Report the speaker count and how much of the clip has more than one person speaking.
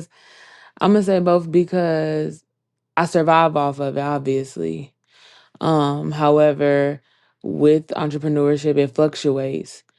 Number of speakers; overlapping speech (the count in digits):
1, no overlap